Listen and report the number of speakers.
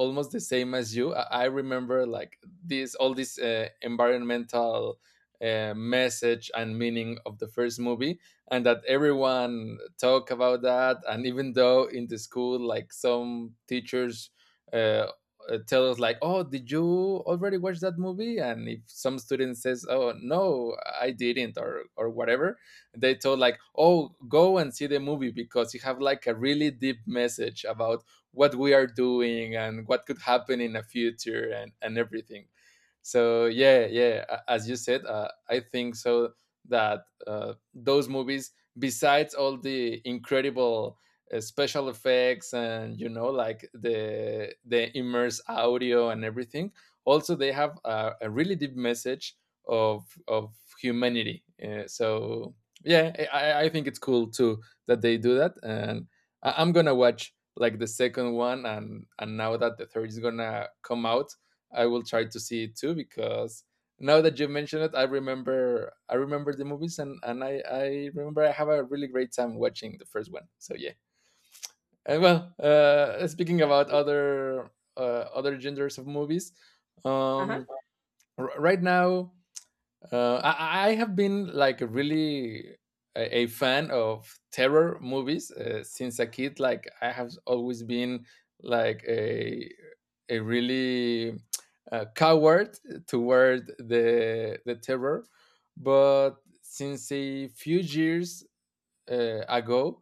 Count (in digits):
1